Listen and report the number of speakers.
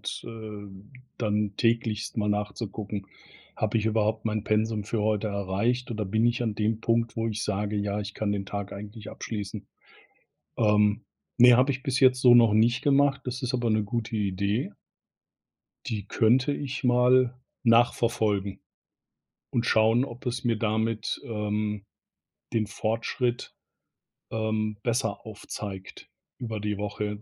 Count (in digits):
1